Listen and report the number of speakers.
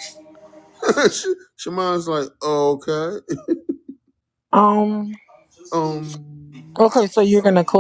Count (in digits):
2